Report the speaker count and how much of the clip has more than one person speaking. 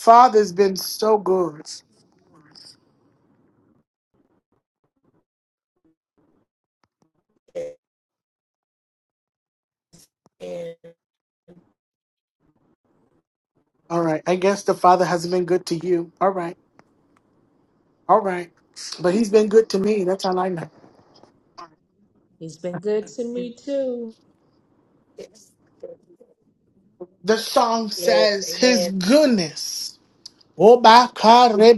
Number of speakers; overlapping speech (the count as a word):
three, about 3%